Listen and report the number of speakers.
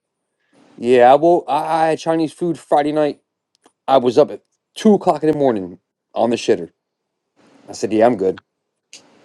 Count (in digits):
1